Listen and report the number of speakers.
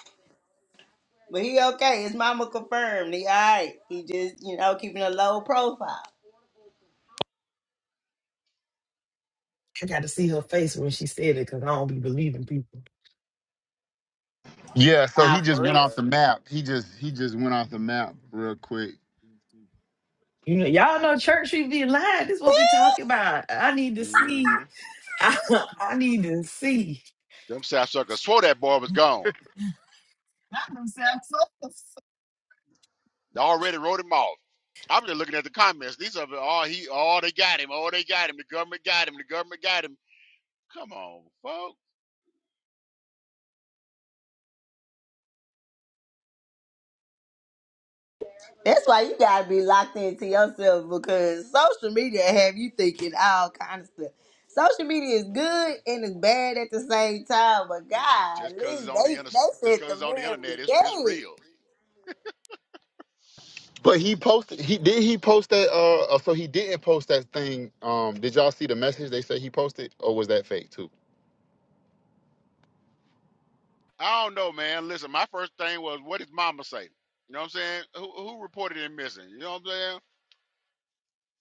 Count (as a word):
four